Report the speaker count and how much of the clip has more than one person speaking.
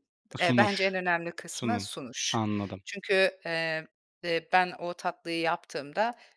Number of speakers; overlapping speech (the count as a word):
two, about 15%